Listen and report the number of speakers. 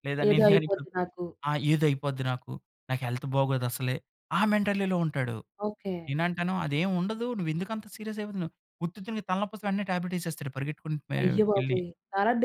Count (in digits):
2